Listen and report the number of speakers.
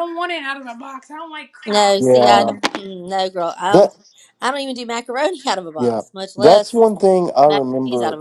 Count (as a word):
three